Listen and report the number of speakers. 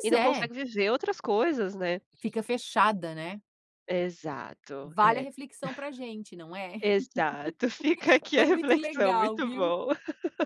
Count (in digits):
2